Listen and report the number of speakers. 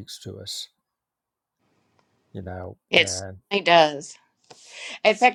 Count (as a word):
two